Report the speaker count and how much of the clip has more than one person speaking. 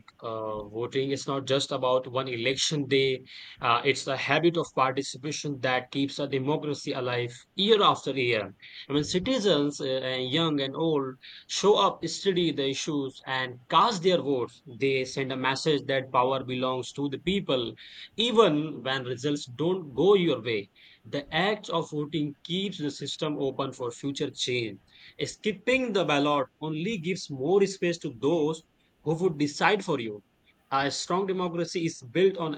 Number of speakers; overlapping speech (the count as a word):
one, no overlap